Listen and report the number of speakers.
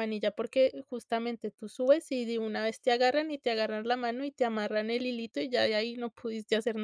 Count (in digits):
1